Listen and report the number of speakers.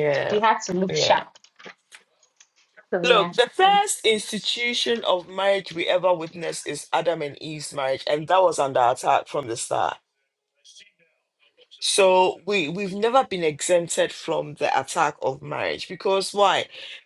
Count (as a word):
two